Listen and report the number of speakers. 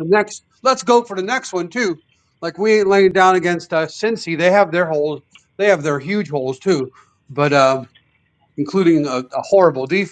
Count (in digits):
1